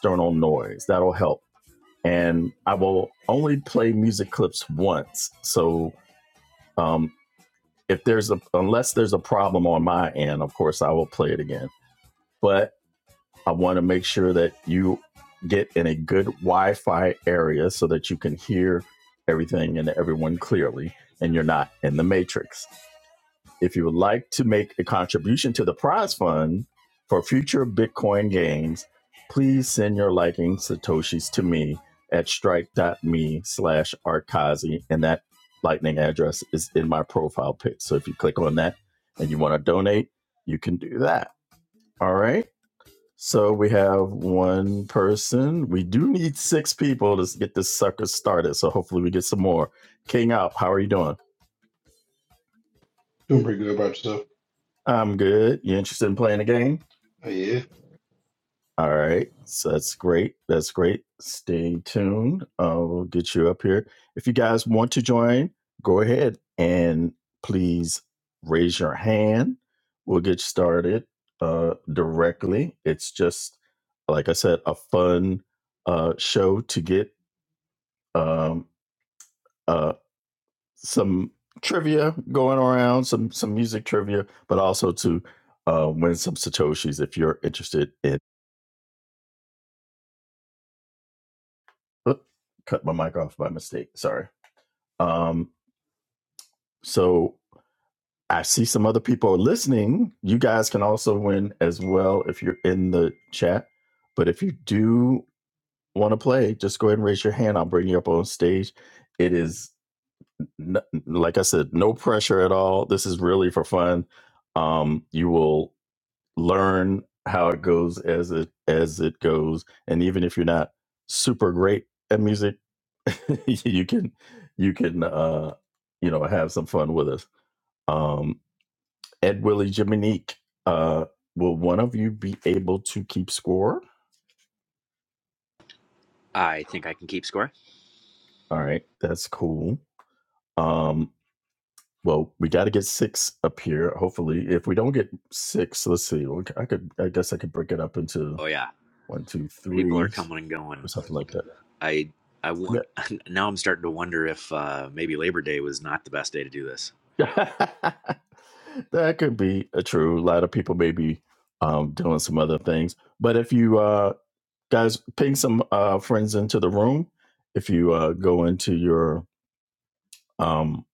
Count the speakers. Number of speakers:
3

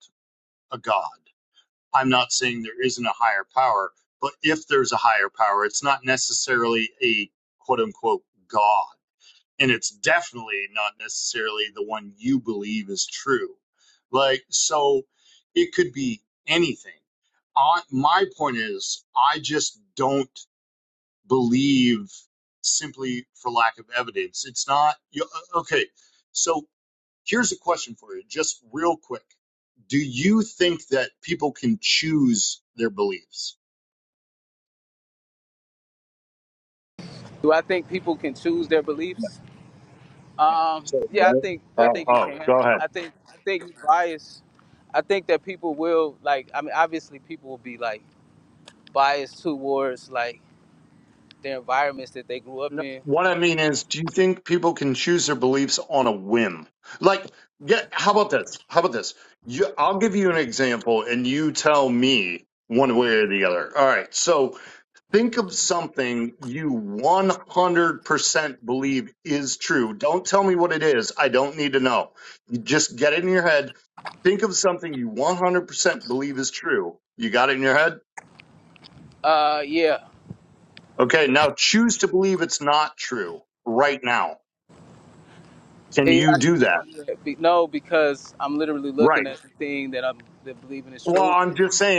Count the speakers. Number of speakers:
2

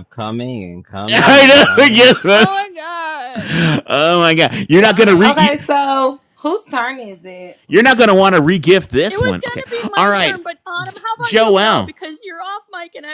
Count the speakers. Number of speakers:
4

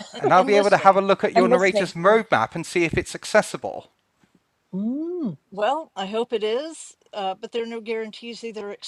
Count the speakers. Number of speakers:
3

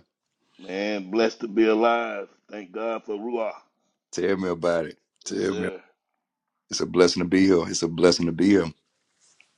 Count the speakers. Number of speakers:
2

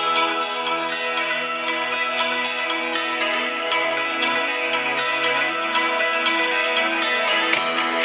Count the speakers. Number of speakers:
0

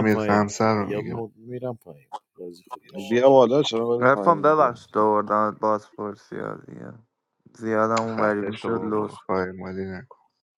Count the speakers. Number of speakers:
4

